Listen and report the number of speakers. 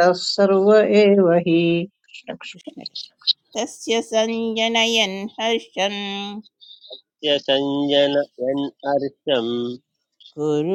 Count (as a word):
three